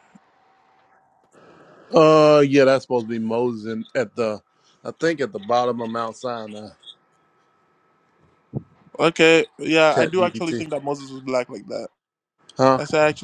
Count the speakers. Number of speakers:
two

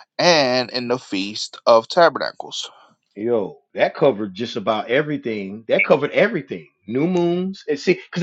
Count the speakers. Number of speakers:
two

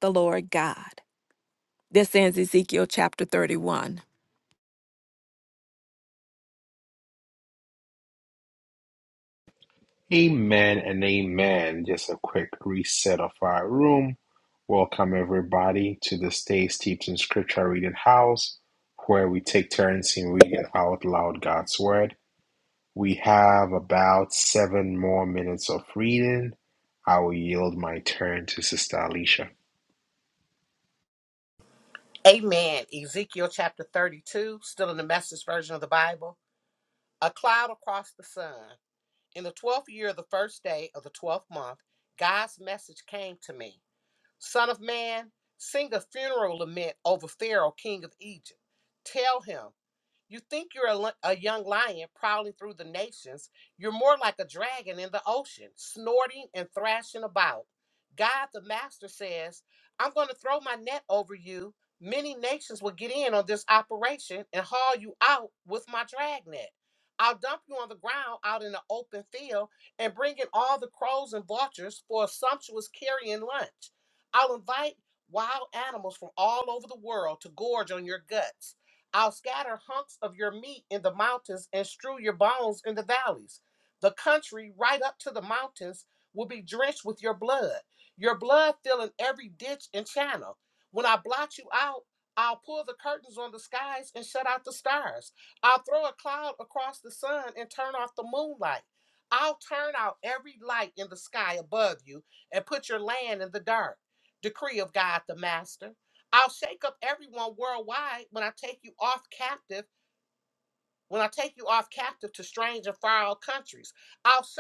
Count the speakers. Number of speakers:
three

